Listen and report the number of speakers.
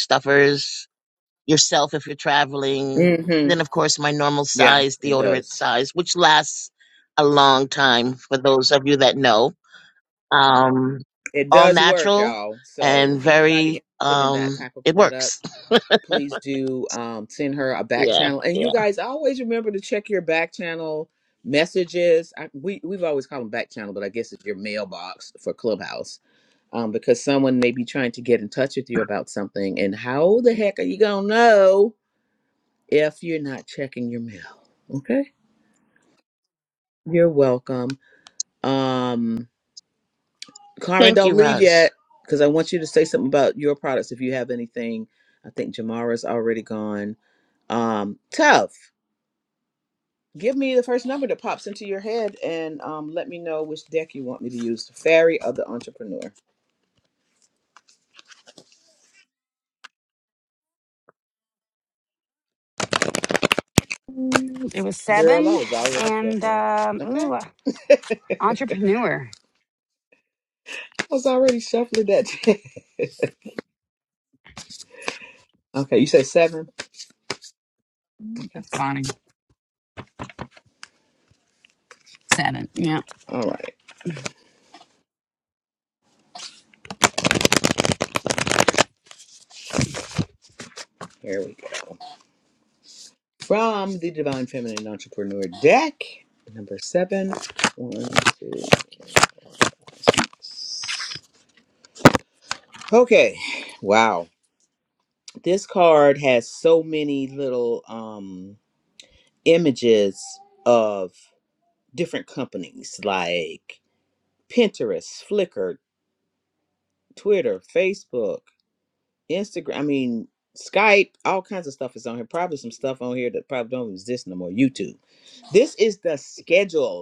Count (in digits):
3